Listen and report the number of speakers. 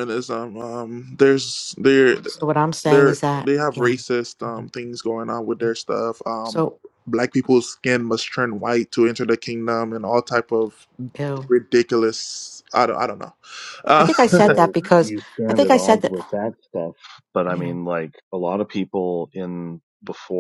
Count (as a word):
three